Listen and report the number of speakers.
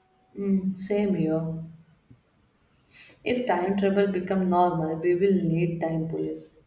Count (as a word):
one